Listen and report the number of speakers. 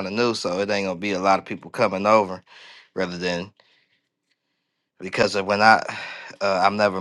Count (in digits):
1